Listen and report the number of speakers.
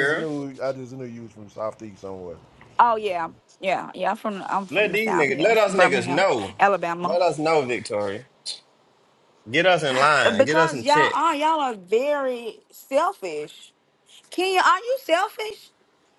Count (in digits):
3